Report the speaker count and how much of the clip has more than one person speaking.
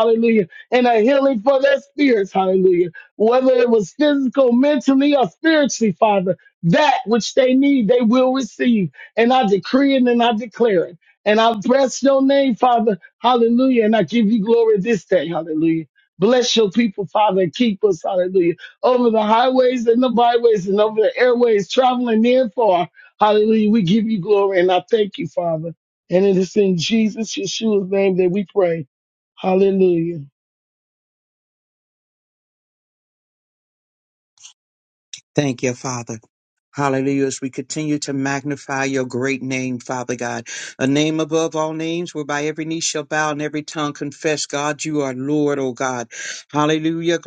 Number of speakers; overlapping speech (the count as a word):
two, no overlap